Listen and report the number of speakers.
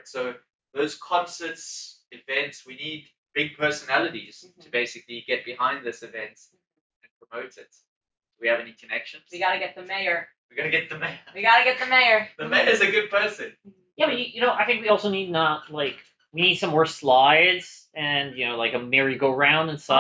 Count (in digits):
3